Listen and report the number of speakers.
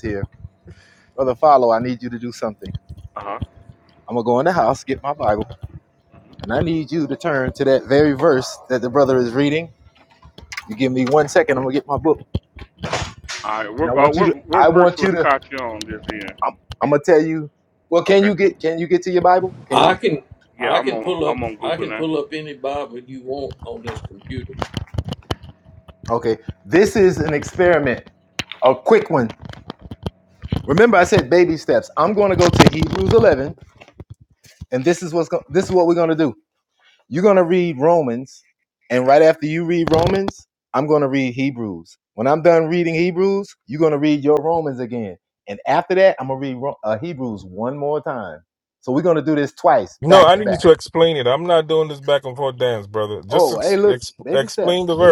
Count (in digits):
4